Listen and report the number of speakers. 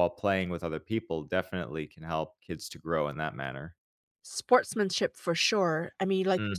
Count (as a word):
two